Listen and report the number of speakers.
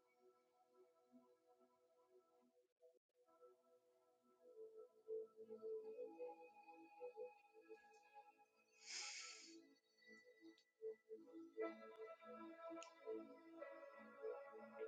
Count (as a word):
zero